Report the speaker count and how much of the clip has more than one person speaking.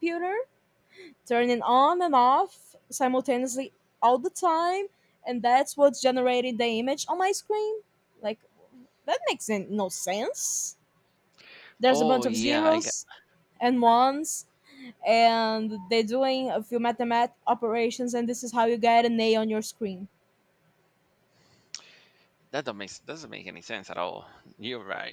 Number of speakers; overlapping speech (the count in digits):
2, about 4%